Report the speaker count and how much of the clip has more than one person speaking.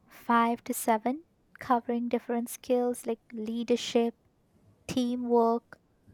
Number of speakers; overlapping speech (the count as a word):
one, no overlap